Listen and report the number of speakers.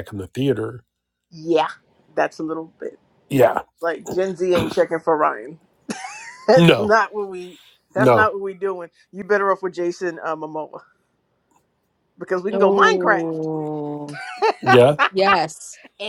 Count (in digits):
3